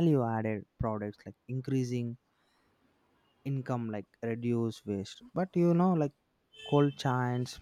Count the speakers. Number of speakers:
1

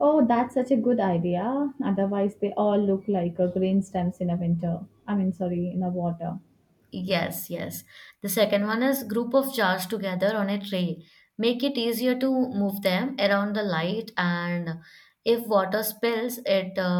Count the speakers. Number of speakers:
2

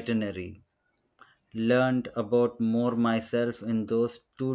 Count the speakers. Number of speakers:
1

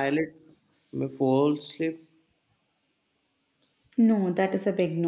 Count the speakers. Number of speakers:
2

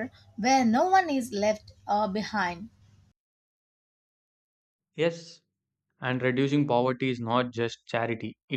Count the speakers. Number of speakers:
2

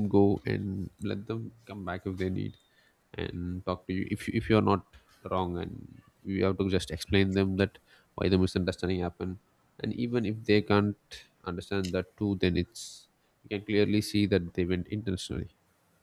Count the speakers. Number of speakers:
1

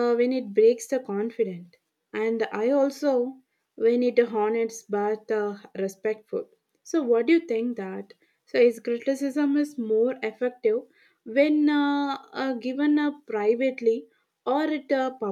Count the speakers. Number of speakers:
1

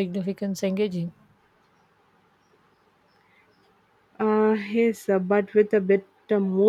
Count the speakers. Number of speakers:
2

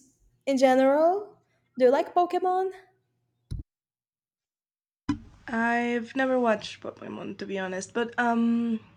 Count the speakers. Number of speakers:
2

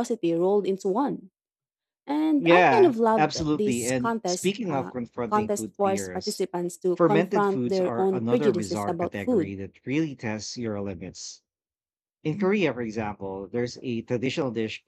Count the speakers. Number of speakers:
2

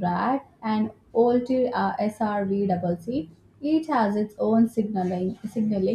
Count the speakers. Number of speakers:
1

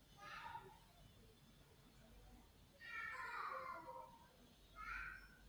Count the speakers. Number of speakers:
0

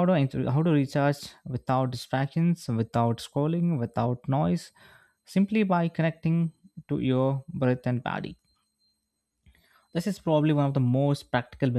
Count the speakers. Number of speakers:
1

